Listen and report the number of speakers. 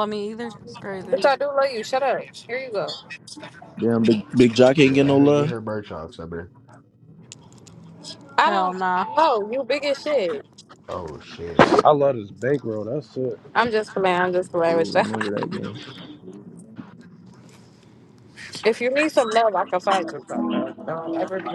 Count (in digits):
5